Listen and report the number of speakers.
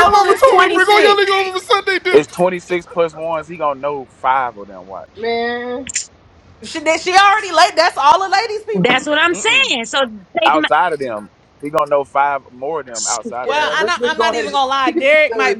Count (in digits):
5